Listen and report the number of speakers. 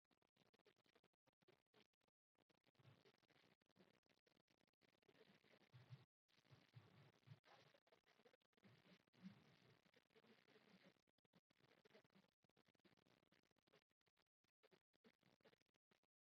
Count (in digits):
0